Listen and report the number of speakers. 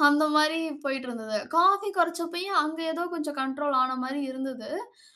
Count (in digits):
1